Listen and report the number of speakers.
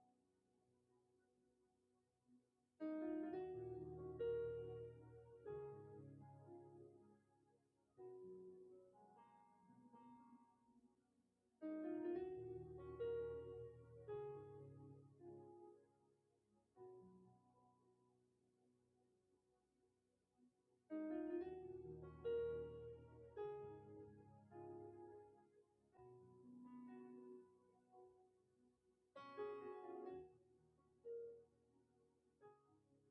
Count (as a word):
zero